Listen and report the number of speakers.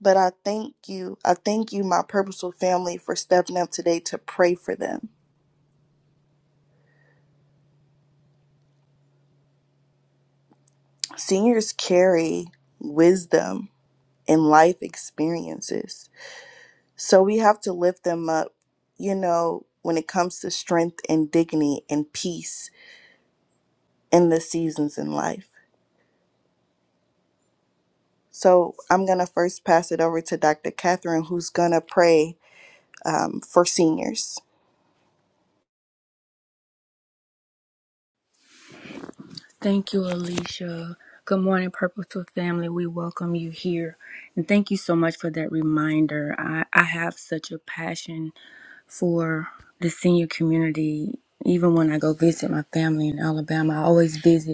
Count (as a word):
two